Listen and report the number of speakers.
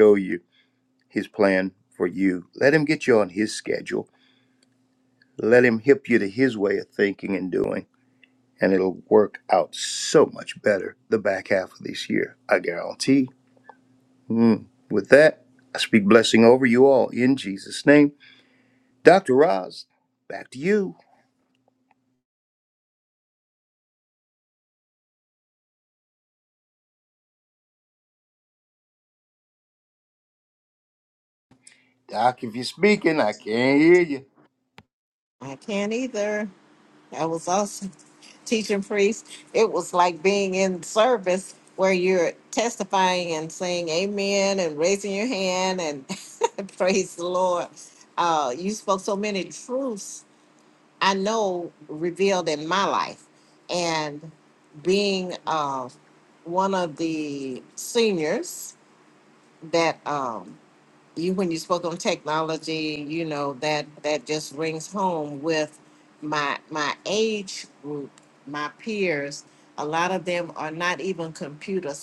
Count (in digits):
2